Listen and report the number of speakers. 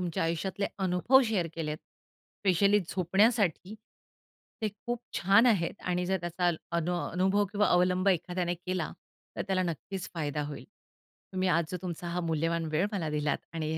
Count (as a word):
one